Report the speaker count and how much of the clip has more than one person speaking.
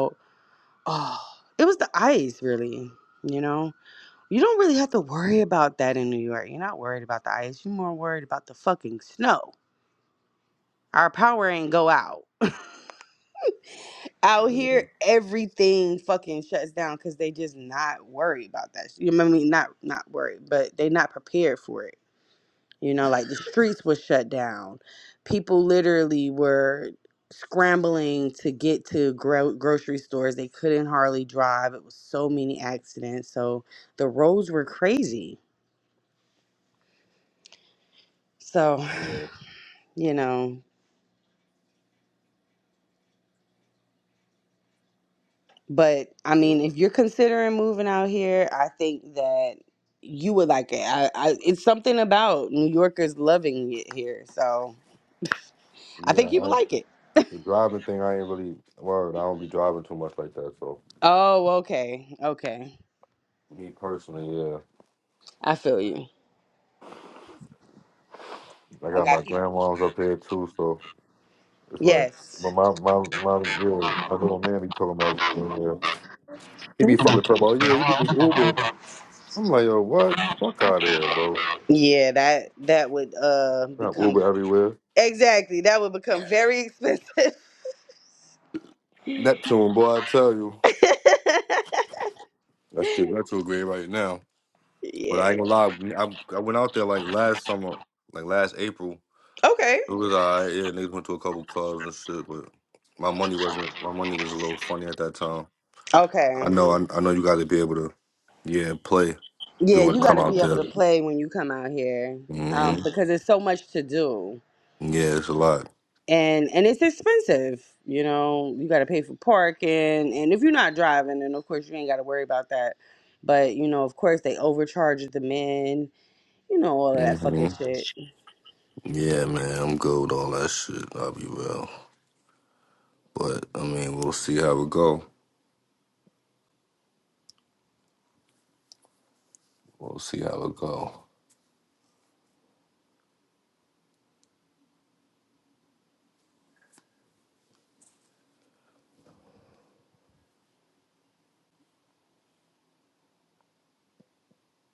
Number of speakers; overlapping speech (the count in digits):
2, about 3%